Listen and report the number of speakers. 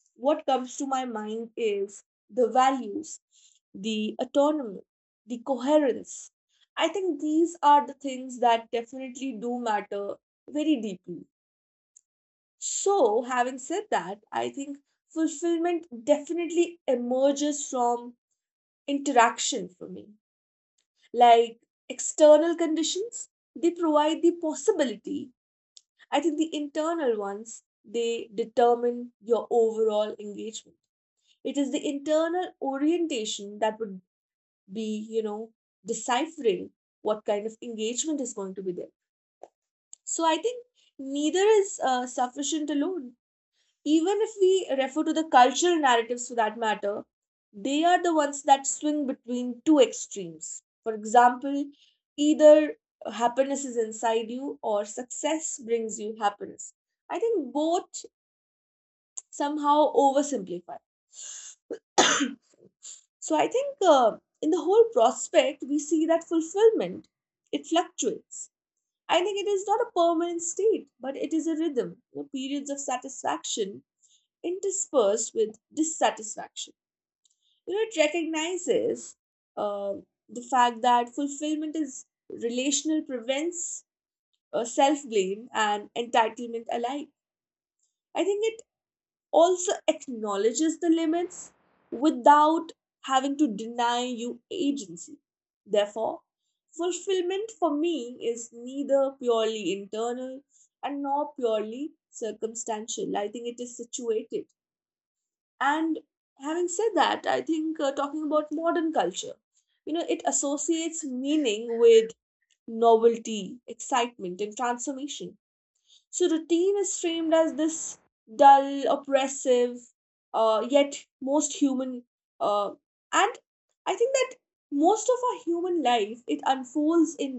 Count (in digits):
1